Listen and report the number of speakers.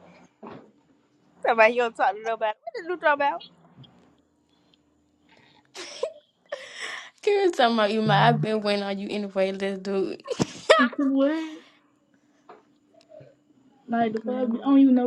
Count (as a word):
three